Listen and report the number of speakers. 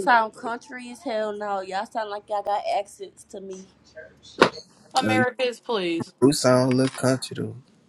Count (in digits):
3